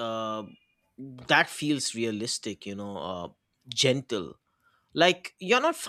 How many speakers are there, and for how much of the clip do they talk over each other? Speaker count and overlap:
1, no overlap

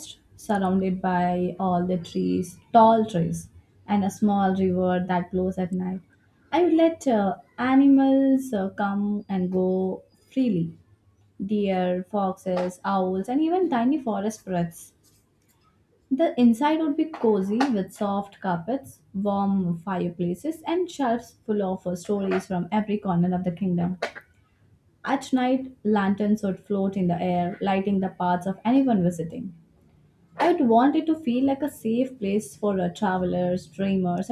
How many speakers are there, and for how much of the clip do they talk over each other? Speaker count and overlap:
1, no overlap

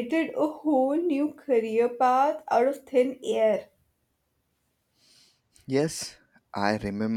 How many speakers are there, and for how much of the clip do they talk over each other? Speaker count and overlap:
2, no overlap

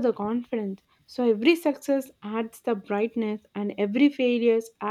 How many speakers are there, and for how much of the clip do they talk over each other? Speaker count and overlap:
1, no overlap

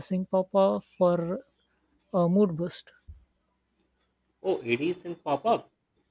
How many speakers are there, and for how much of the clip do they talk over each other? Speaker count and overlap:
2, no overlap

